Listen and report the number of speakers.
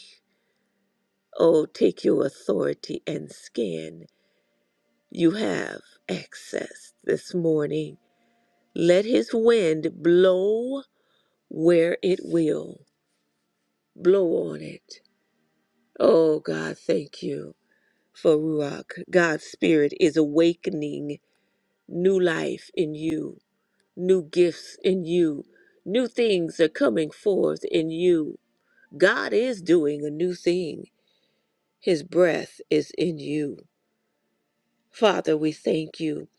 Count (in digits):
1